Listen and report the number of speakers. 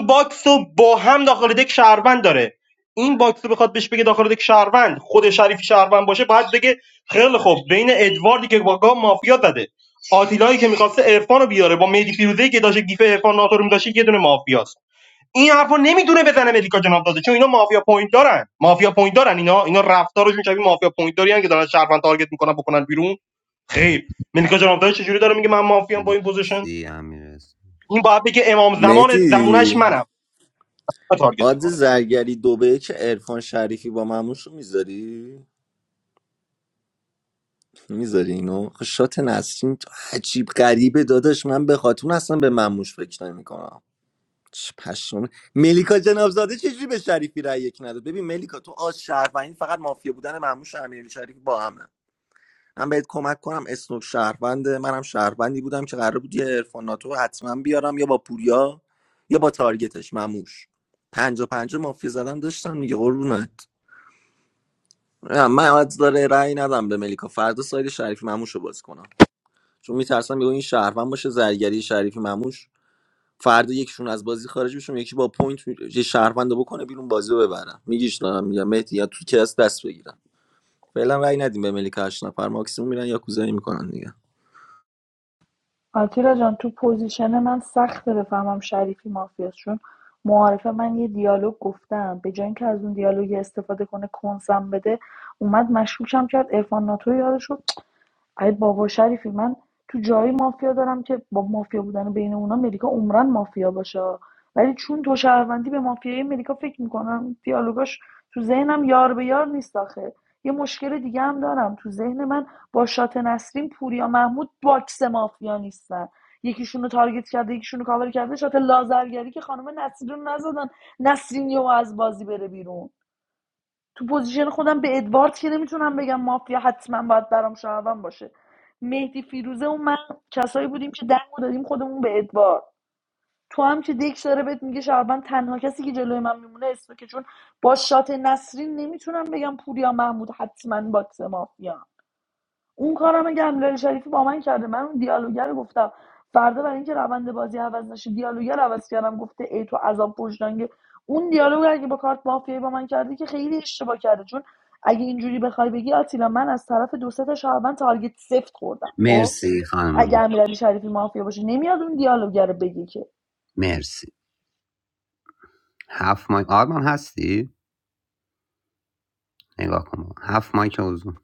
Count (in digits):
4